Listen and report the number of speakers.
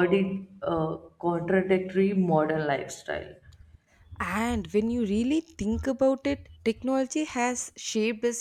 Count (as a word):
two